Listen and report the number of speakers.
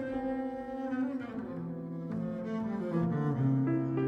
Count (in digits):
0